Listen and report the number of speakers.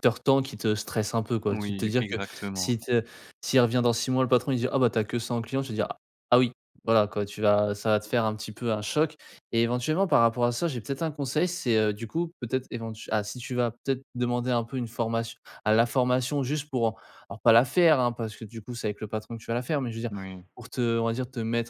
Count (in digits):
2